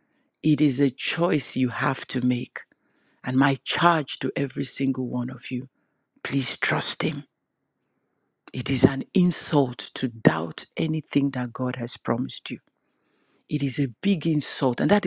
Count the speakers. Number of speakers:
1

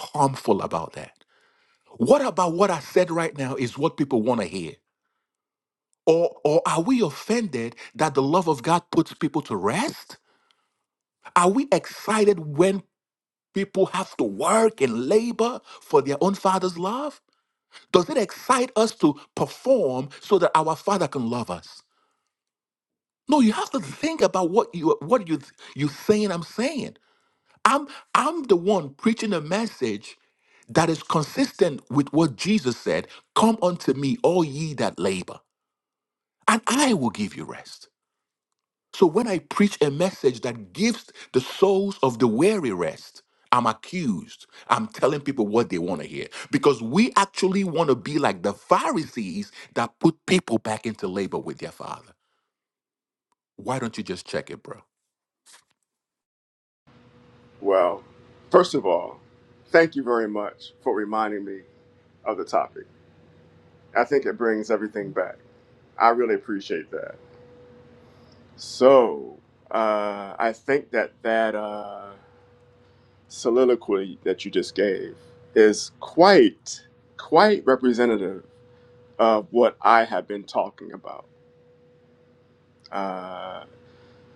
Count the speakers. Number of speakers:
2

